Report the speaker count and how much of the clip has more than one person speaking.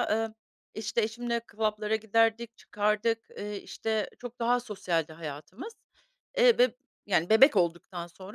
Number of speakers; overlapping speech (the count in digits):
1, no overlap